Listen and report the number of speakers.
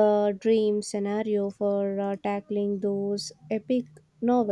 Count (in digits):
1